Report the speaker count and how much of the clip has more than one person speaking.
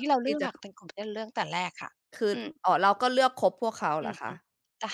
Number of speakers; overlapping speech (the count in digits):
2, about 21%